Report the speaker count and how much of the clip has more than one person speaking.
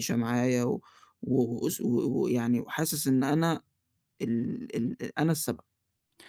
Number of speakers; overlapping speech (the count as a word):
one, no overlap